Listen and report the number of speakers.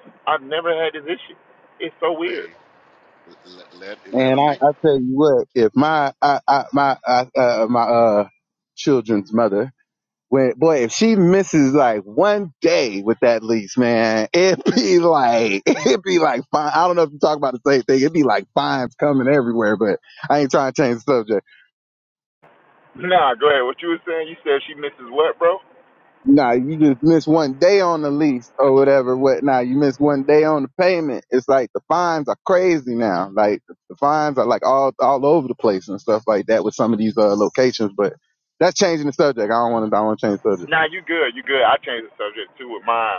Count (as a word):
three